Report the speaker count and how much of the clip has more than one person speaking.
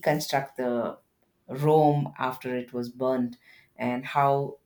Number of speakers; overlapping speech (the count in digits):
1, no overlap